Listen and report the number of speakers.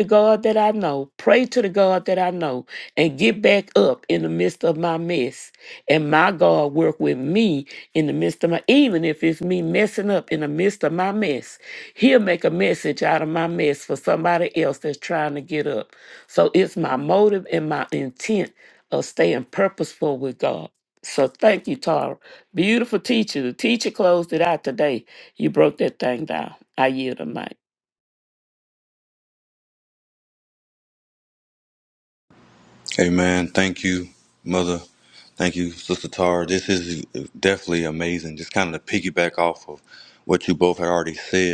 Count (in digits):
2